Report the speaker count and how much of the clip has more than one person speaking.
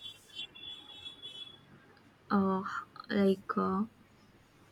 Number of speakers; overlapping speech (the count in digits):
1, no overlap